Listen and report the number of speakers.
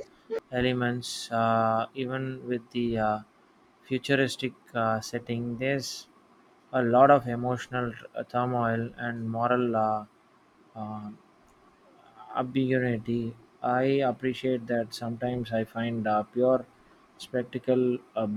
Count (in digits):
1